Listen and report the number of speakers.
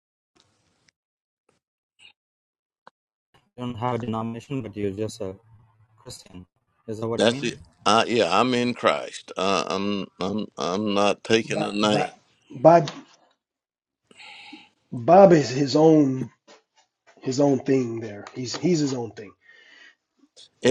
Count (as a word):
three